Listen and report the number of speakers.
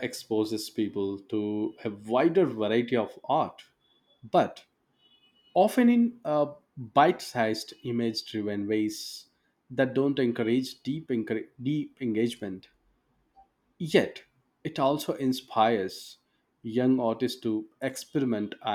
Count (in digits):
1